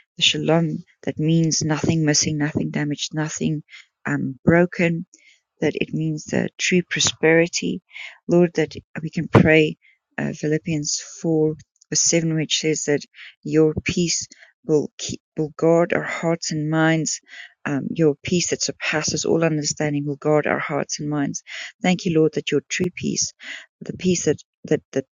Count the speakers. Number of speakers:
1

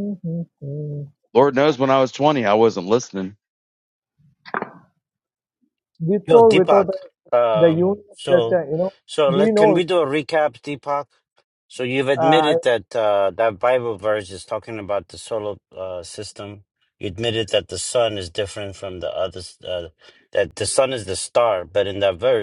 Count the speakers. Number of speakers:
3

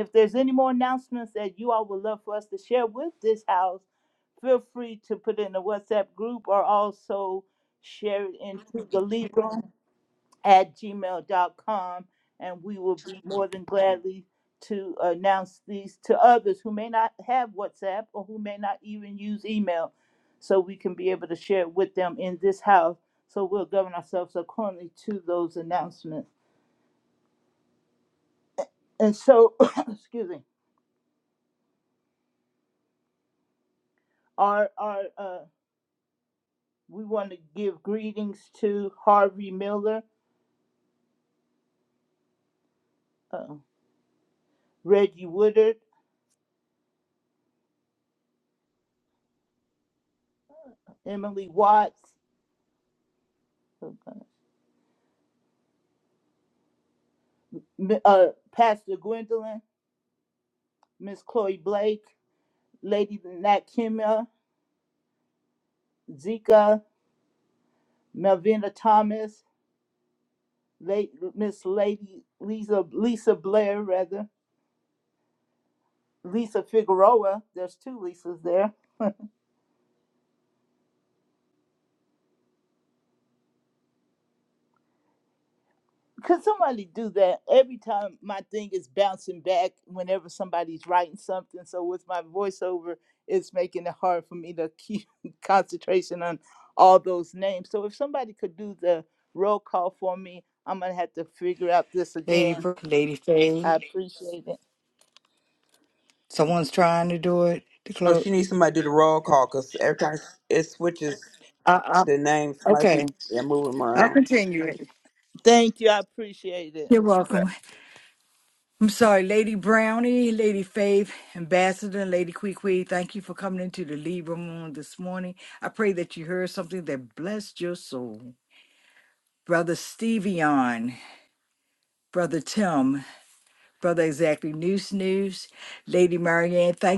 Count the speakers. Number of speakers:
3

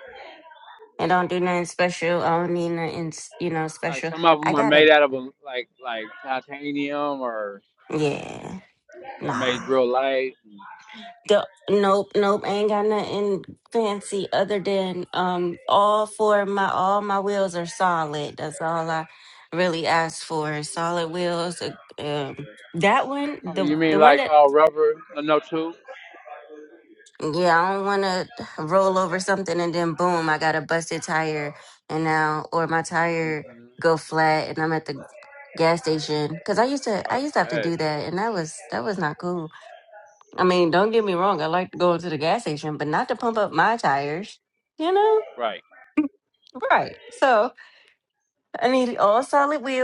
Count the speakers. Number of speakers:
2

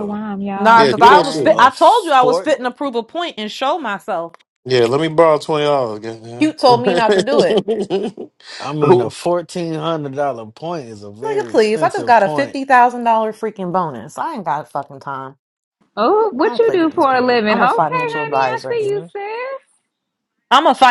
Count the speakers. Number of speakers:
4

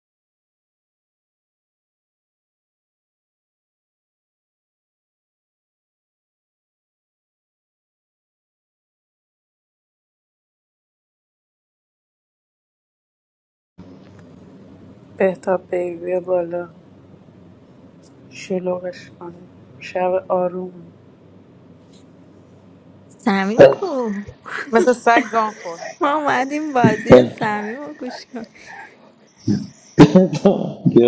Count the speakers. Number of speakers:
3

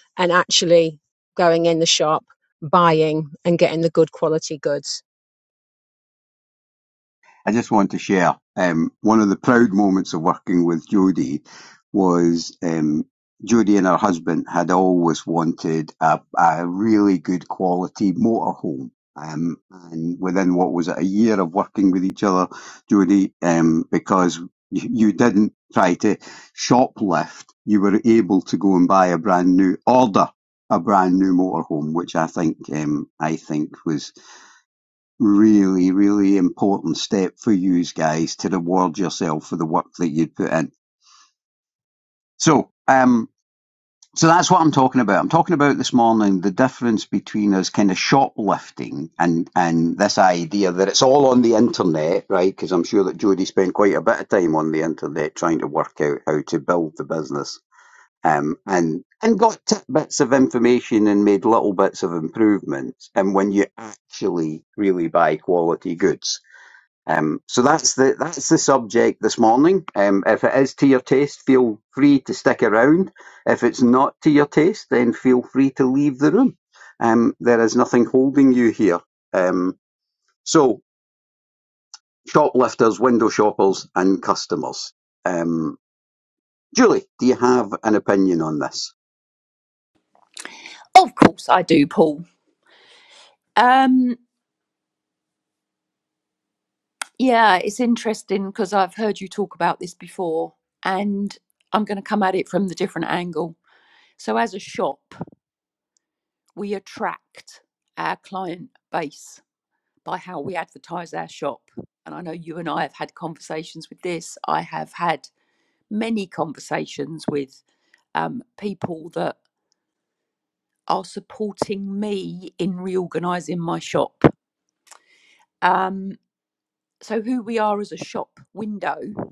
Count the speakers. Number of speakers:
3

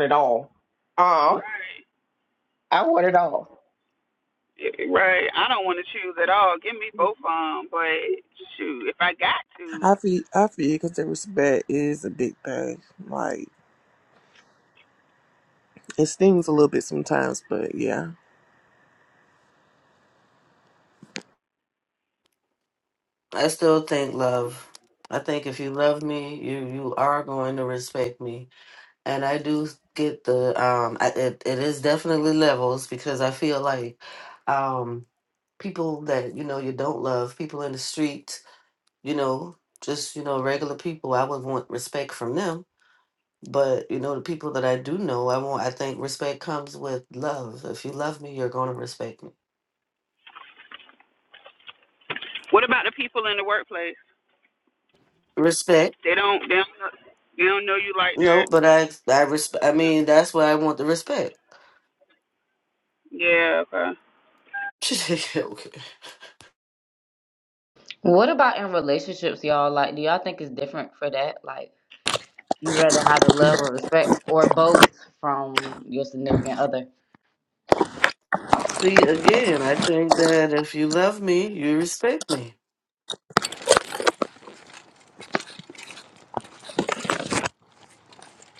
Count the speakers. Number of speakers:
5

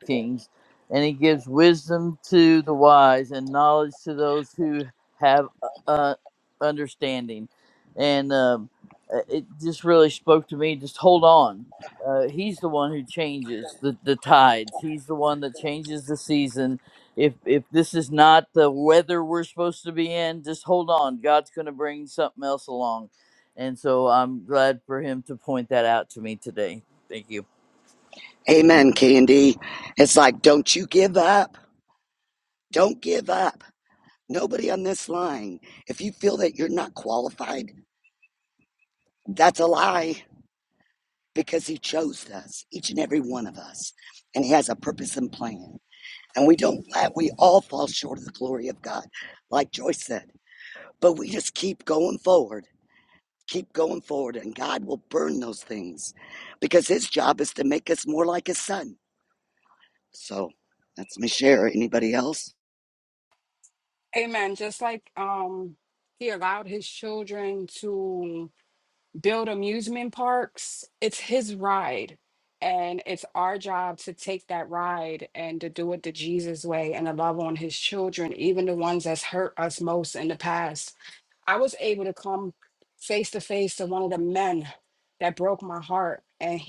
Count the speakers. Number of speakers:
3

